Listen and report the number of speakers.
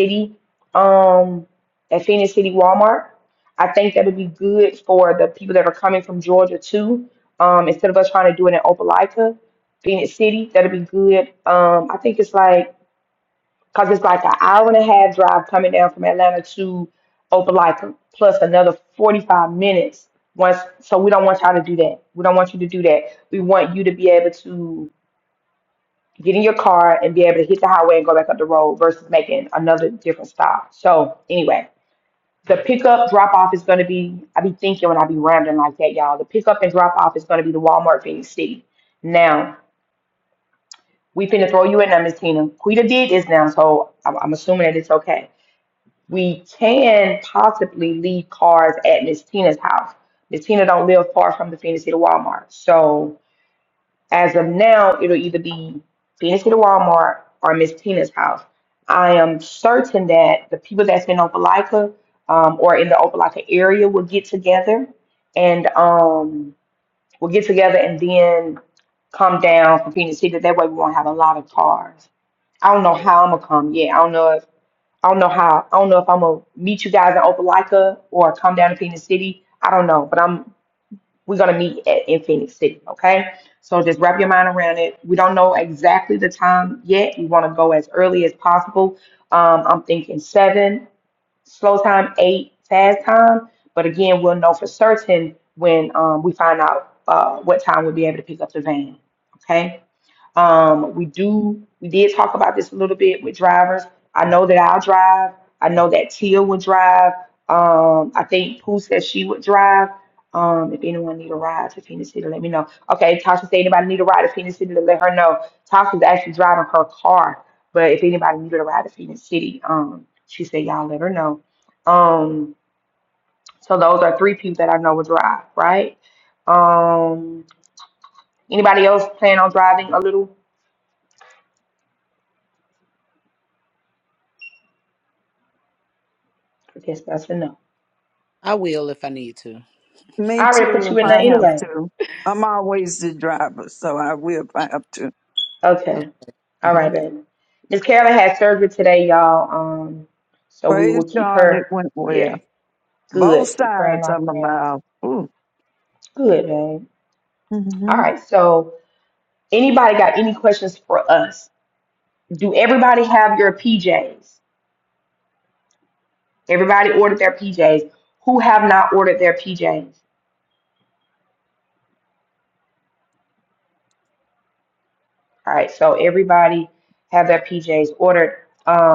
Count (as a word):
three